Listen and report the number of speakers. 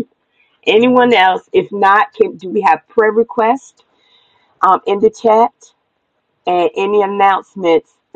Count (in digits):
1